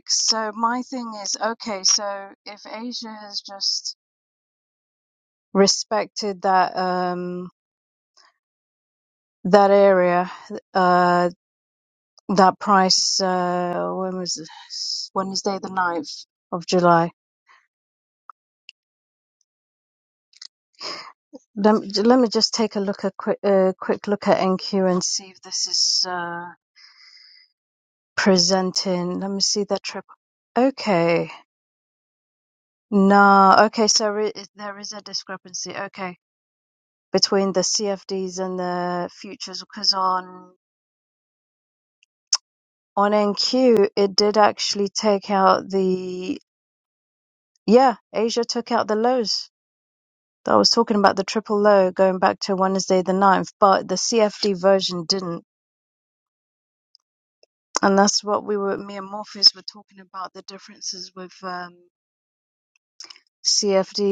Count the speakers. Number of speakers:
1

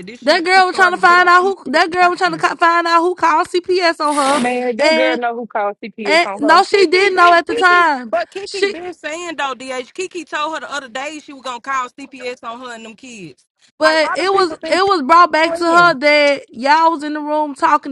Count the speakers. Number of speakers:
3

